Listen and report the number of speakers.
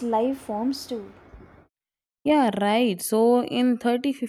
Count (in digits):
2